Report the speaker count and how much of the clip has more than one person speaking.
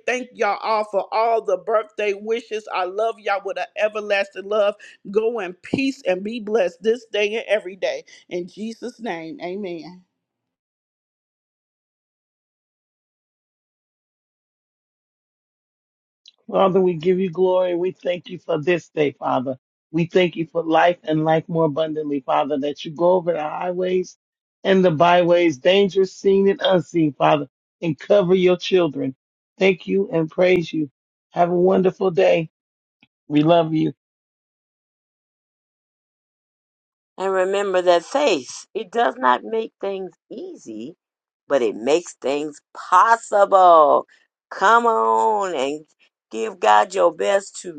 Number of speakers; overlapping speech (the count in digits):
3, no overlap